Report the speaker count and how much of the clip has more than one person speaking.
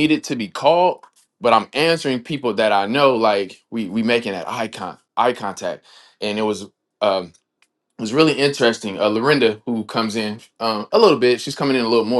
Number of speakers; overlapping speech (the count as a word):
one, no overlap